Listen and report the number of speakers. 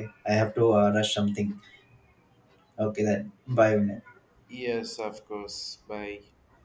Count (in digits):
2